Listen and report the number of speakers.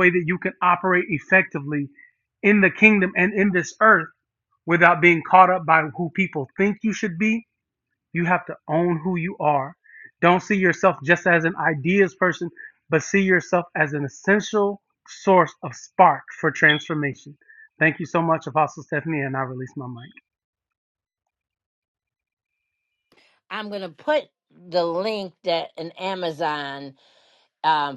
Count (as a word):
two